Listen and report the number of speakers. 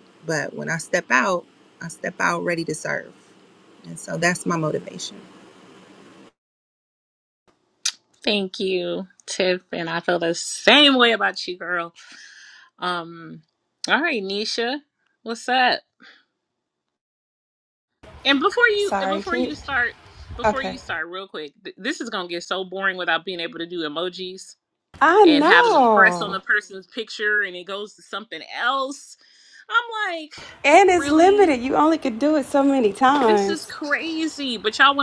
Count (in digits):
3